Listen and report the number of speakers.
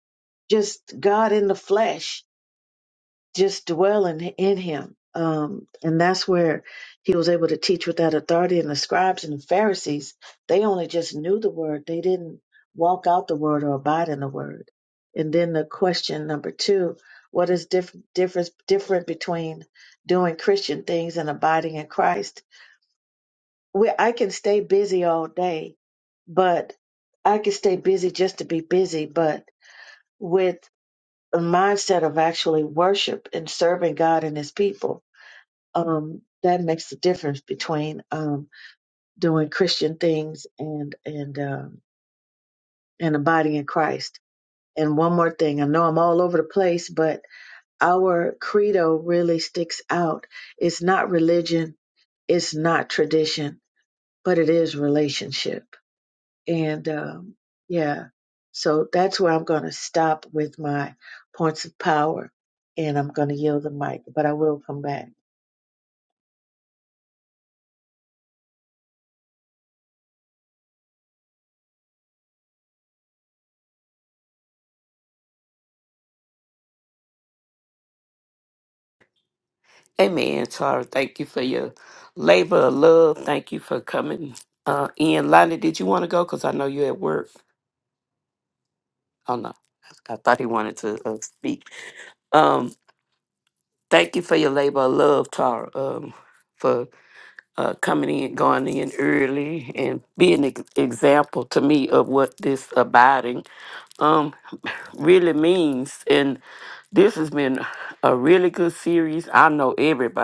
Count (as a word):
two